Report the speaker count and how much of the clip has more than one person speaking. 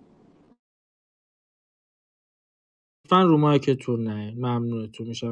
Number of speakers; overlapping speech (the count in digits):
1, no overlap